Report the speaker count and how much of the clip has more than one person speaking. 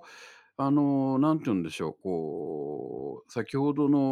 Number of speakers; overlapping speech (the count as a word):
one, no overlap